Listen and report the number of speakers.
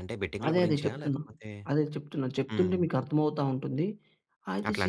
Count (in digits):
2